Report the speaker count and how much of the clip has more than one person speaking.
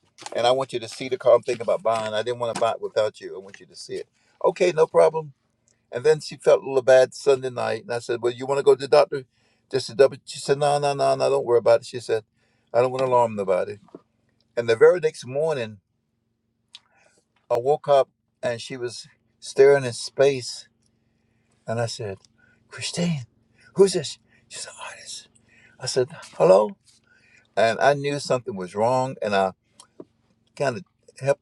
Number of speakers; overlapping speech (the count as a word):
one, no overlap